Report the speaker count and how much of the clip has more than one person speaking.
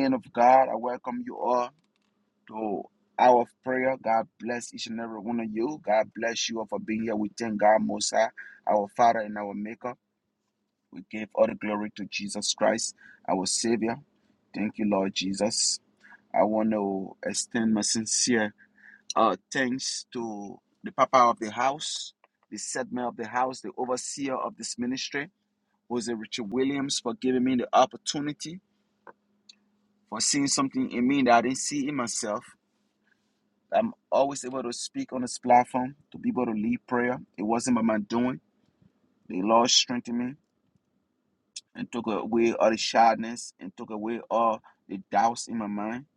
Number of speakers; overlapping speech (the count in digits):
1, no overlap